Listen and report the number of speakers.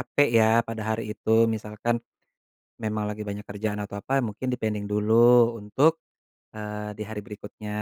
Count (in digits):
1